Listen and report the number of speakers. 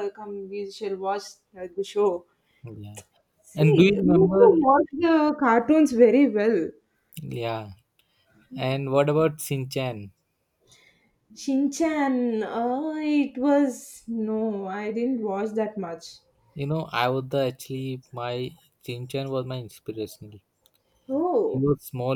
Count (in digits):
2